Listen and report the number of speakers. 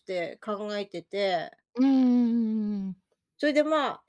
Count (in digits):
2